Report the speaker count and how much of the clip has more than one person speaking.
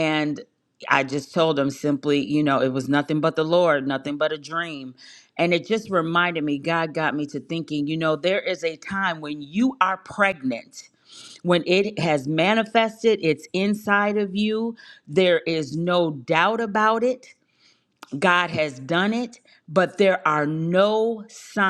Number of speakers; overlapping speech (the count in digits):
1, no overlap